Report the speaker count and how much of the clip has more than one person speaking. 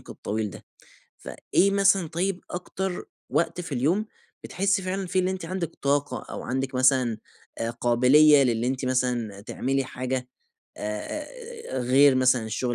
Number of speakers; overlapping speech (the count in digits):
1, no overlap